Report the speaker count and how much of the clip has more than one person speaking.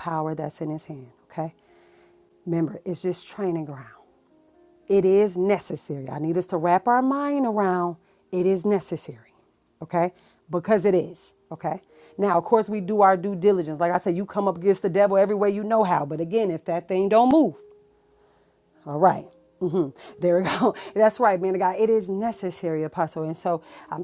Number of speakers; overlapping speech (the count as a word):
one, no overlap